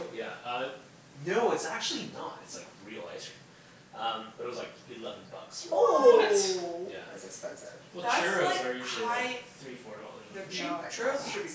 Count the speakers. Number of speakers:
four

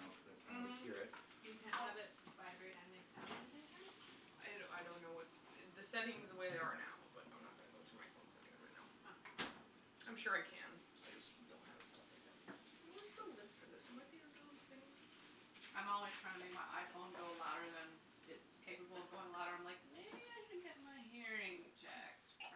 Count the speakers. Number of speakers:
four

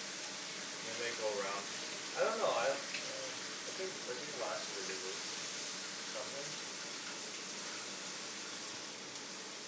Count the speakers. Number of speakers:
one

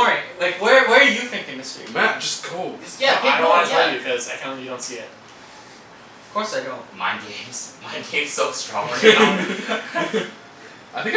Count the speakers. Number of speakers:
four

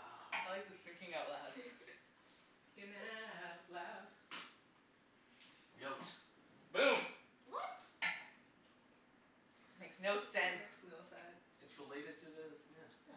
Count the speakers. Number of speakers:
four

